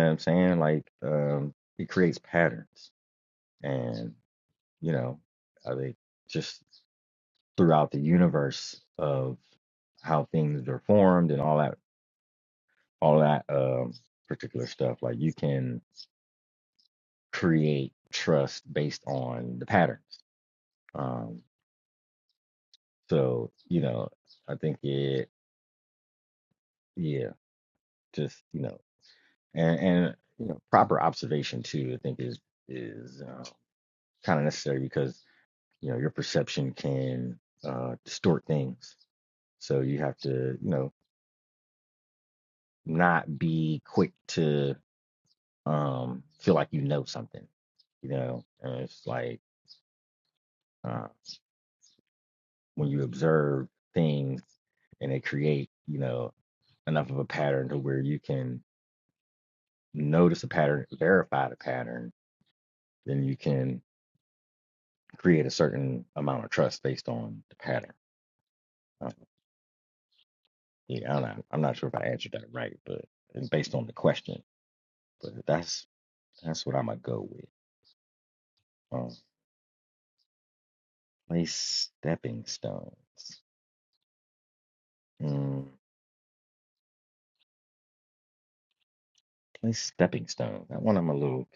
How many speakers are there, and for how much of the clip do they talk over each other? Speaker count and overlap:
one, no overlap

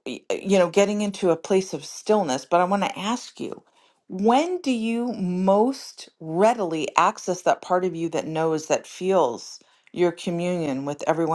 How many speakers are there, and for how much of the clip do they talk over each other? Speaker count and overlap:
one, no overlap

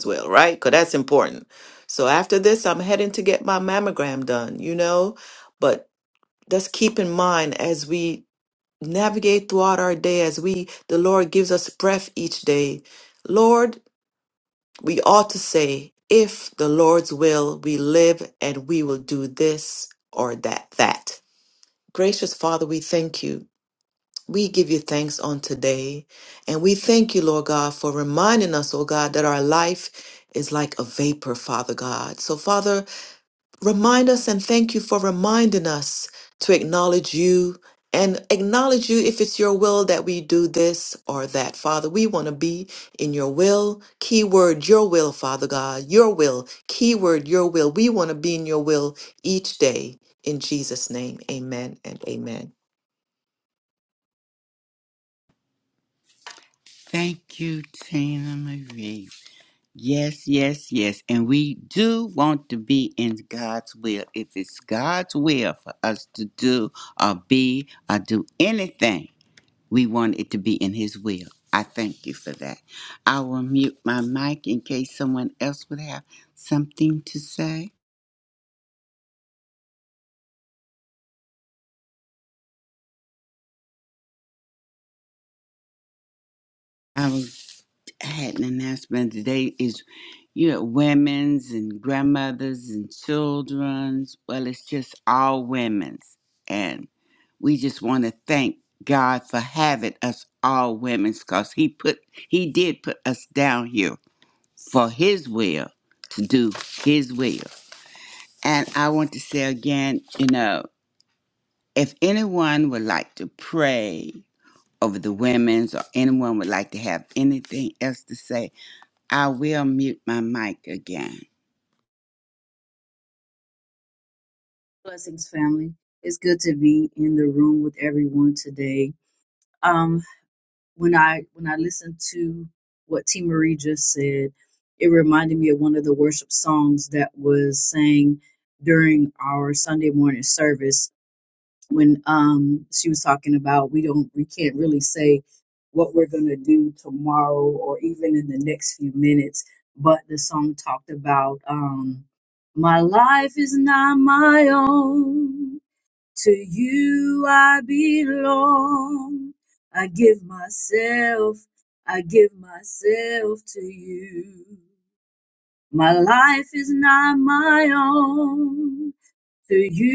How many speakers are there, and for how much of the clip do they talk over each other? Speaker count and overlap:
three, no overlap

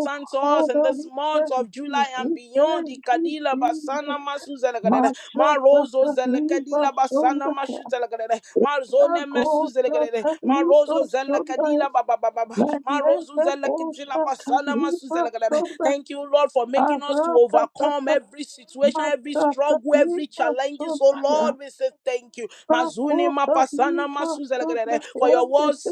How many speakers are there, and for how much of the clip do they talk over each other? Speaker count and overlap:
two, about 73%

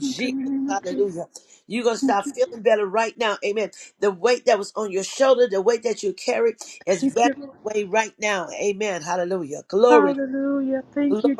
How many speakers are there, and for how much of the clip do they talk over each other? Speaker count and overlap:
two, about 18%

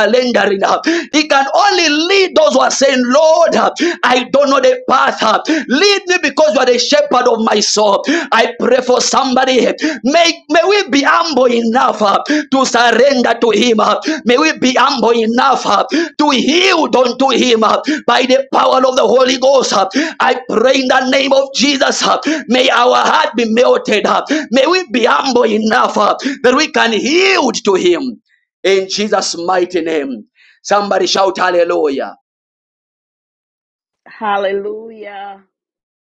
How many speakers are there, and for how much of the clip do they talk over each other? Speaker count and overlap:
two, no overlap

